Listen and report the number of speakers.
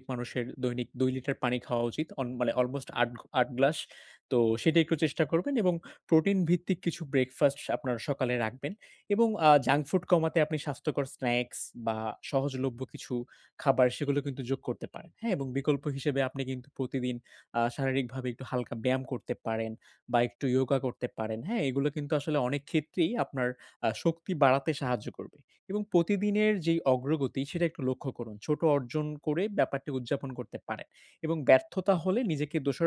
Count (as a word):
one